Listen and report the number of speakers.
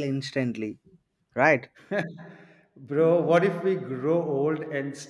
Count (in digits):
2